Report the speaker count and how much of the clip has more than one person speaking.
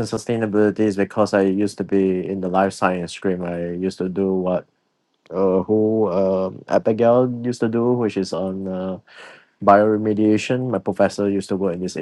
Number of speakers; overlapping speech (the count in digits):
1, no overlap